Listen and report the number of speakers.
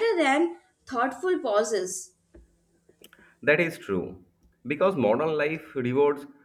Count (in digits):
2